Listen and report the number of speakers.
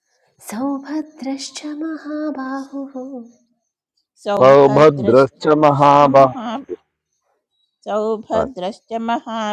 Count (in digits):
3